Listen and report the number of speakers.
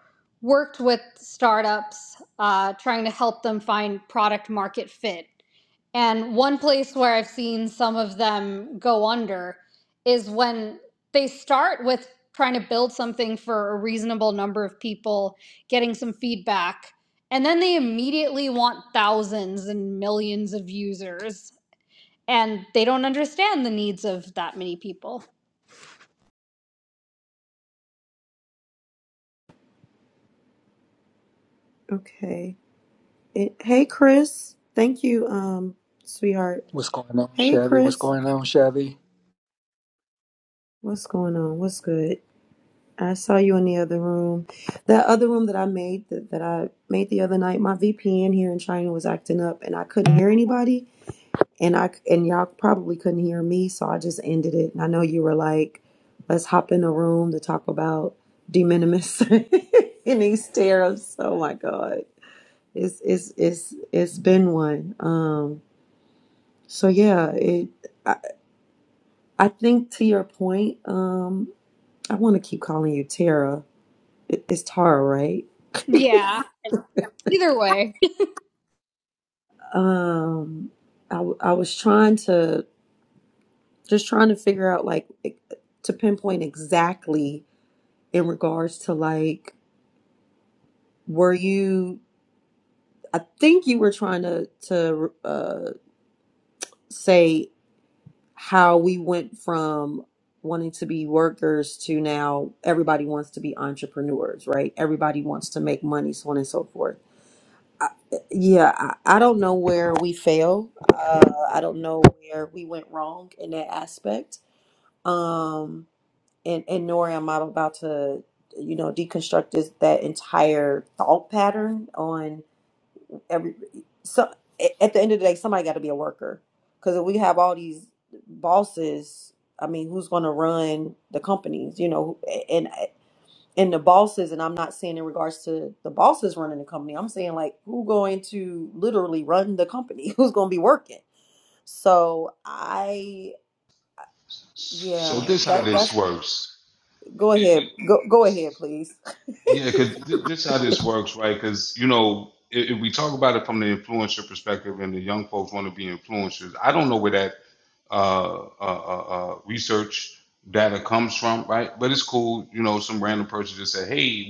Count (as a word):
four